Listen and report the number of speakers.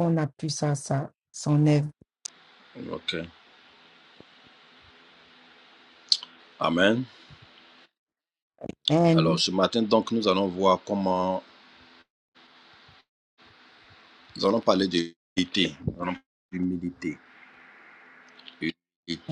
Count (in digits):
2